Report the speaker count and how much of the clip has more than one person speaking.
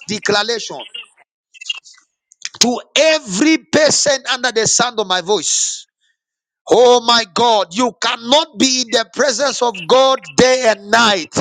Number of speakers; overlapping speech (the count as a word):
one, no overlap